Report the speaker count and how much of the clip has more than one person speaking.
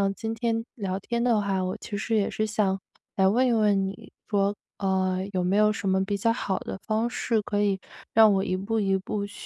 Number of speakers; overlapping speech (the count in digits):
1, no overlap